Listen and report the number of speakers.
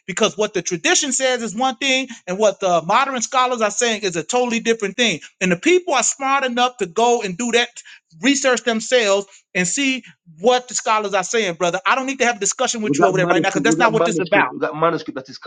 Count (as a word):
two